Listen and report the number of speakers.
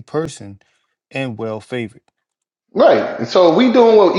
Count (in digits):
2